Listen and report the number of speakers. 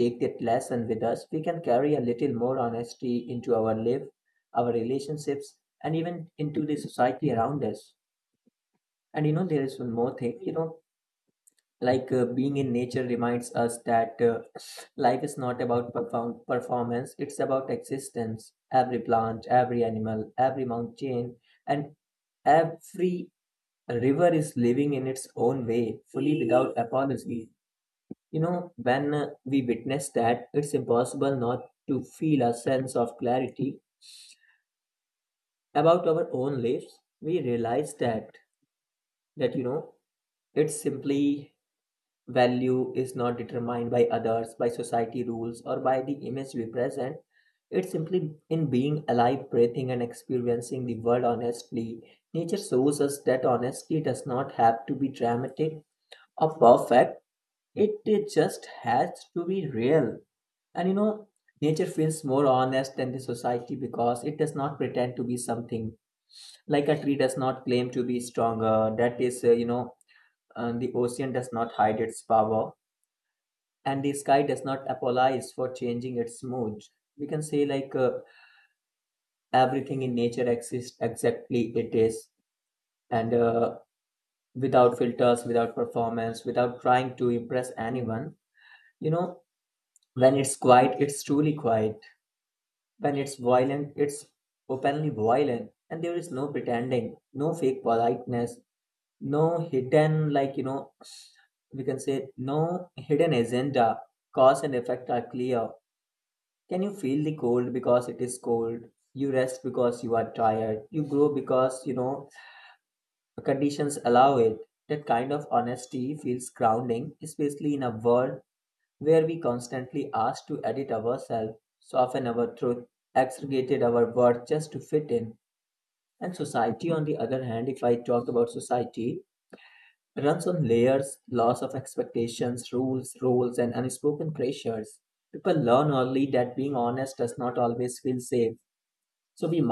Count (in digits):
1